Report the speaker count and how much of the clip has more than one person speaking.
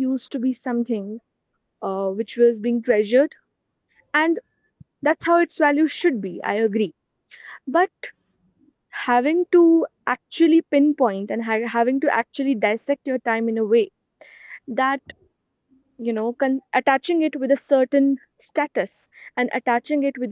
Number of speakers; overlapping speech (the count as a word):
one, no overlap